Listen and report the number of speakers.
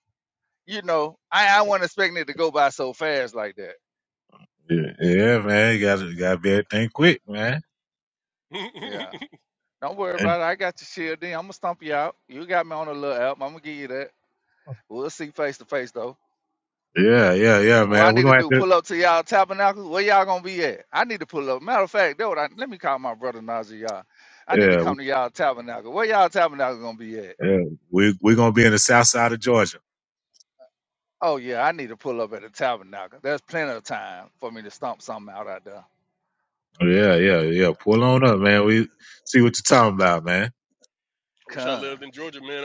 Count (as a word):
three